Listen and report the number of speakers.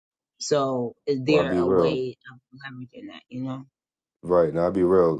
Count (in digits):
2